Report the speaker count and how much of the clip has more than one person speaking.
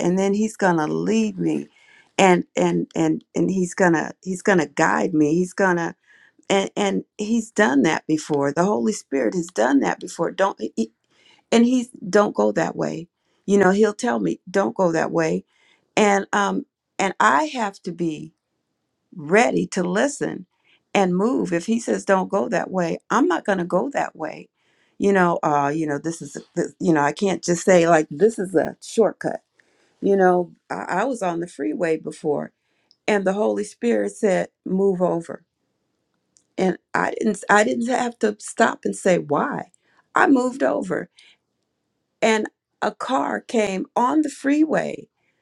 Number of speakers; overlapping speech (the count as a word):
one, no overlap